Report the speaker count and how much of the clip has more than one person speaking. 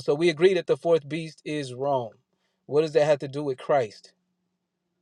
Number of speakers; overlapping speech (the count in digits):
1, no overlap